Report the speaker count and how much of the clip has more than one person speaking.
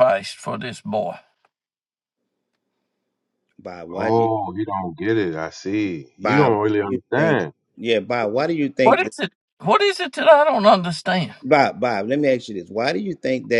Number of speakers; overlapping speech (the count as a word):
three, about 10%